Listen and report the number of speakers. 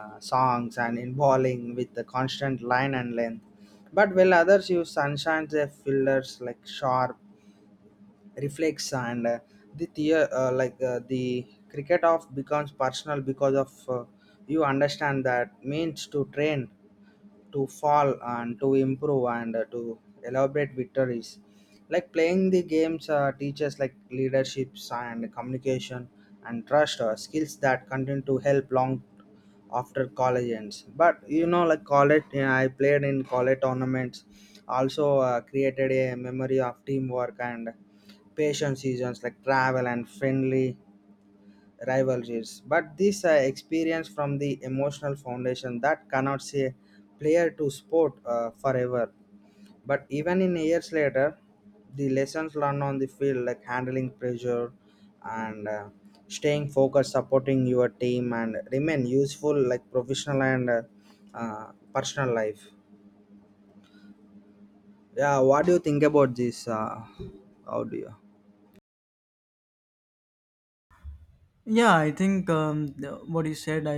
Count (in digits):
2